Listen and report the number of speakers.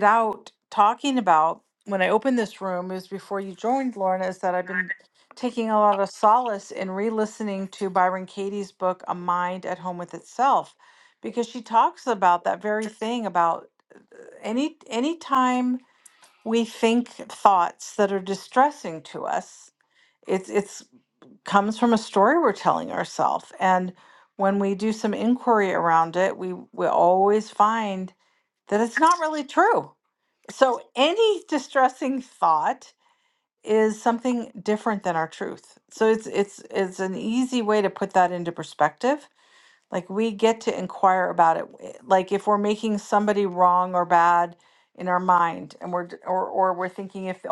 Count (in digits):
1